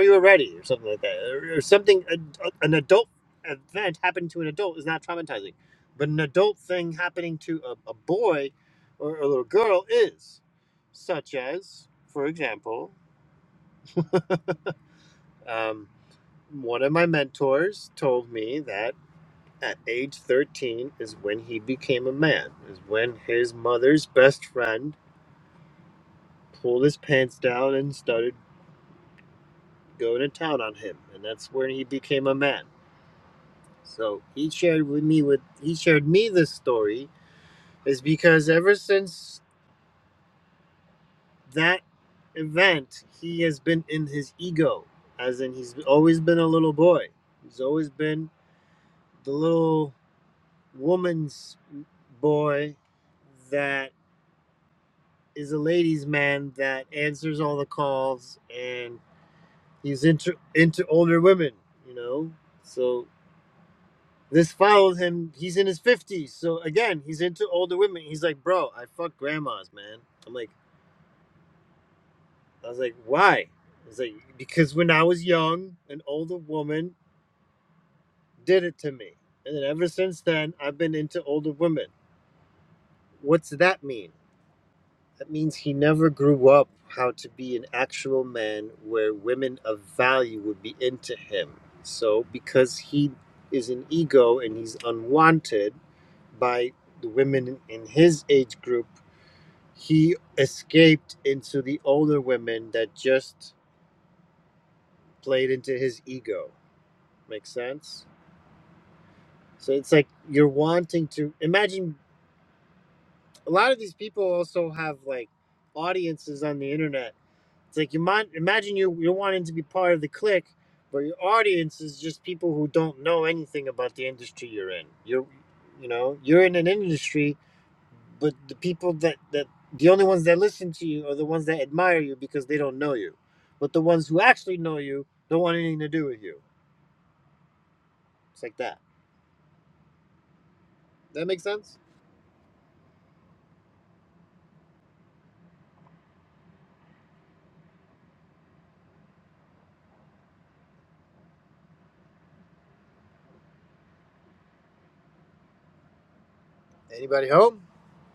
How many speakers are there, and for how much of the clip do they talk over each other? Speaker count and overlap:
1, no overlap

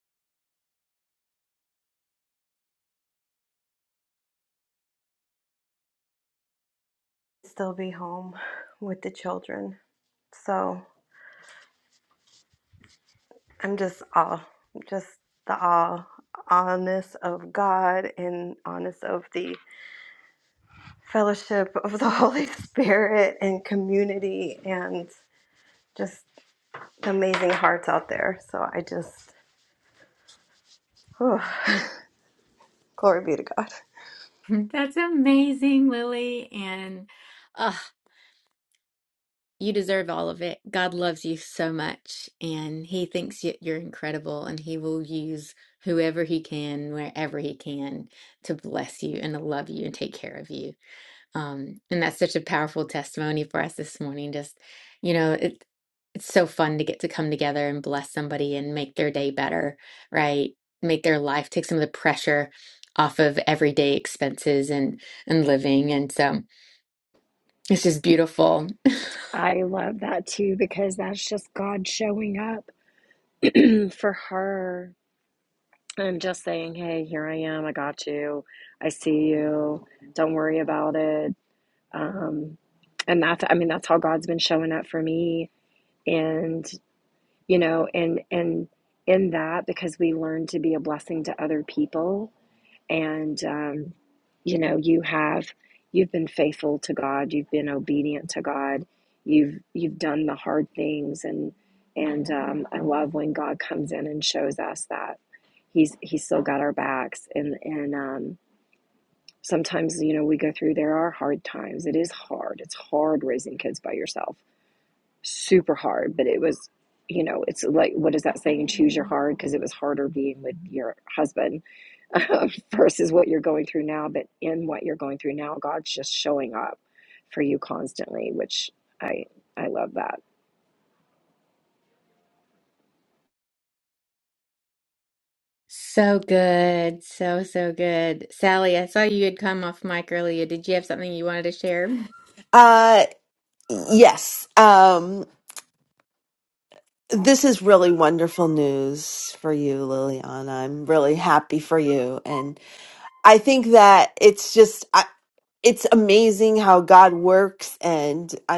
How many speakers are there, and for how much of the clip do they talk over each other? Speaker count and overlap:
4, no overlap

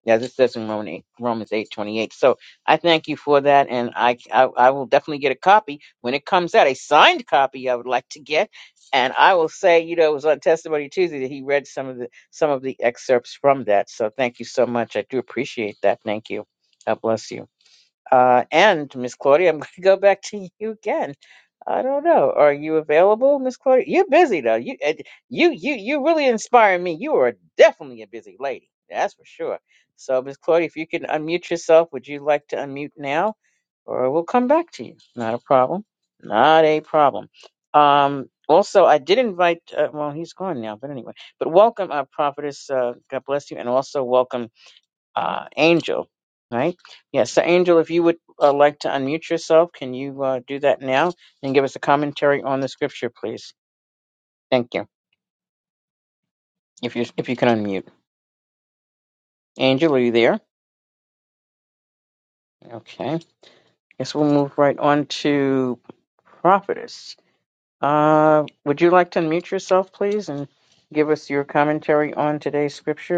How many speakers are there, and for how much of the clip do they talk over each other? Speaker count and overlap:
1, no overlap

